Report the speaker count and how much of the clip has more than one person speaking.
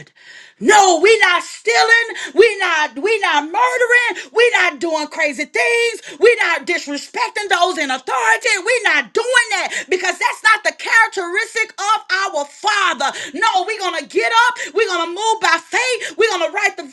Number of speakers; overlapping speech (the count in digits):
1, no overlap